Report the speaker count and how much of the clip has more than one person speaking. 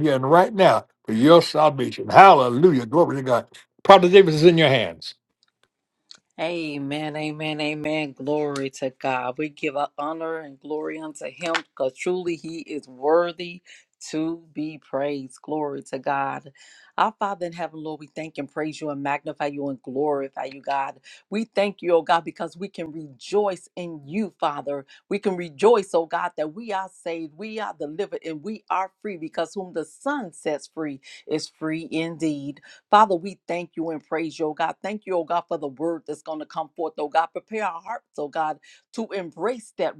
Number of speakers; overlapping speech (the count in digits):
2, no overlap